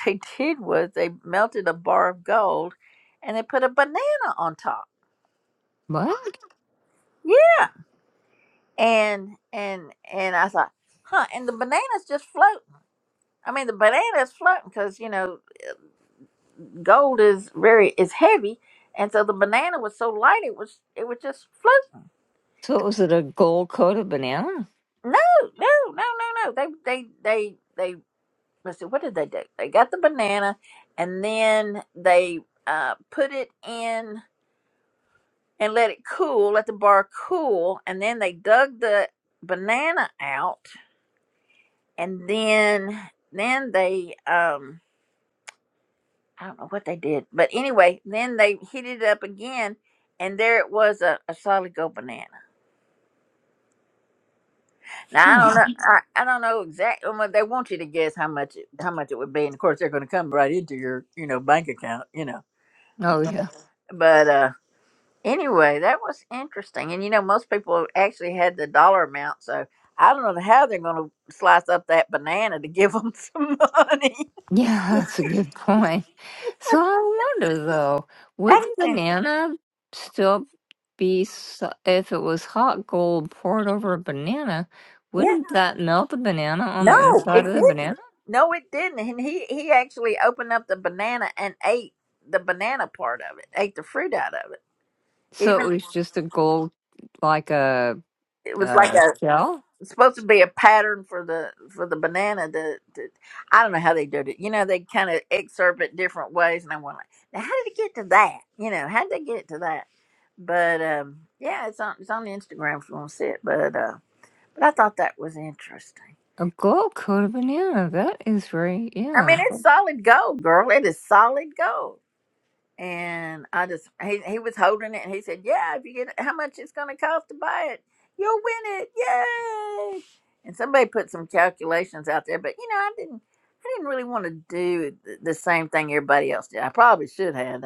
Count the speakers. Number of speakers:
two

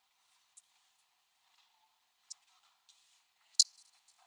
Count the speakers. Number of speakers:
zero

